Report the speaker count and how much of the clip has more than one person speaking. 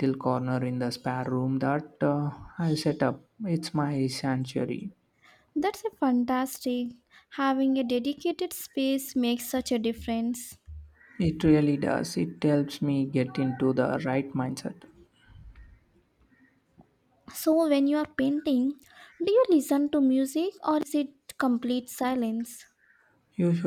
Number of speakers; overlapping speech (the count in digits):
2, no overlap